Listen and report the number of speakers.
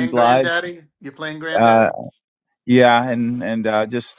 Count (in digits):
2